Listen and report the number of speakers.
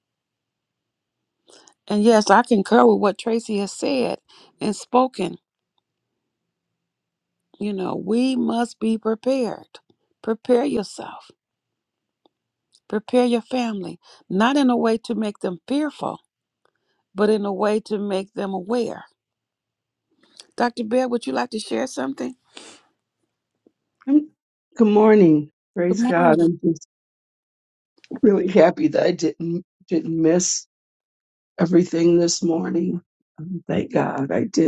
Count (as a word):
two